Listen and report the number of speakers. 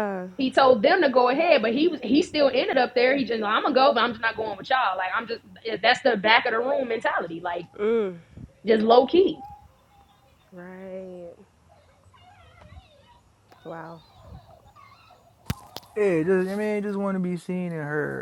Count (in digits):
3